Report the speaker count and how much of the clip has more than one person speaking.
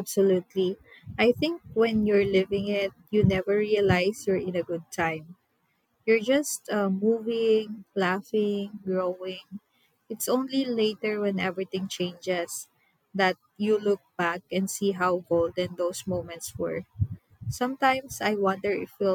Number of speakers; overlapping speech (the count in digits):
1, no overlap